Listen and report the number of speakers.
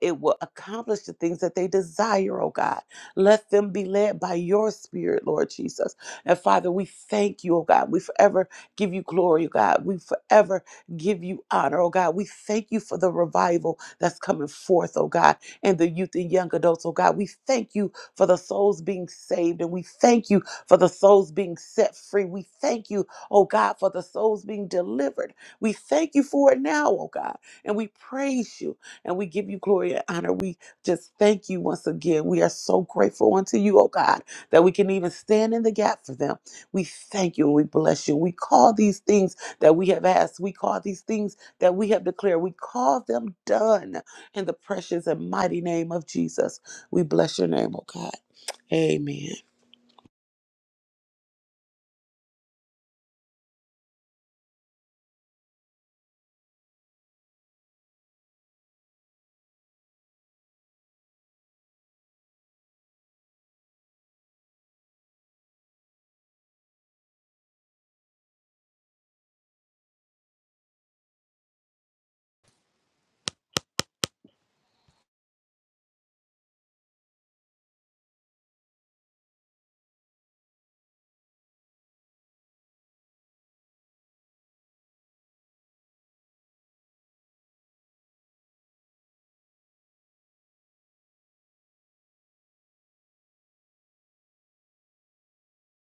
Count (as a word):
one